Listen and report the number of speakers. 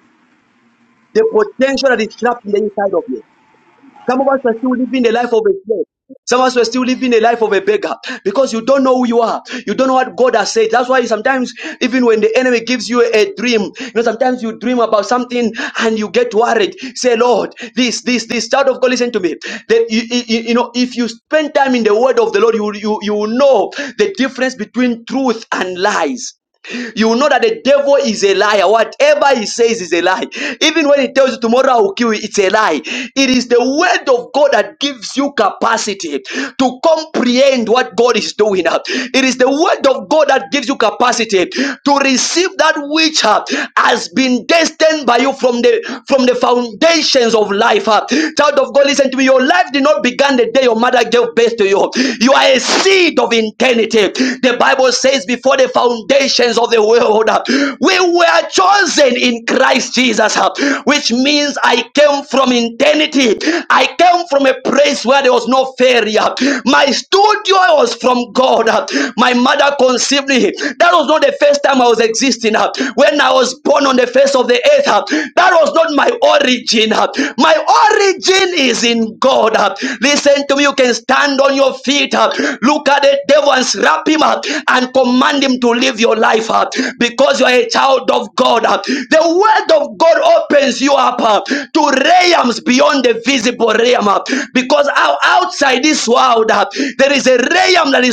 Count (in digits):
1